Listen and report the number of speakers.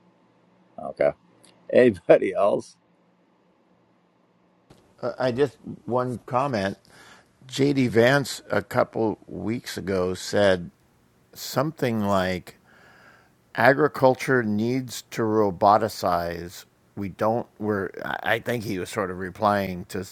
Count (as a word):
two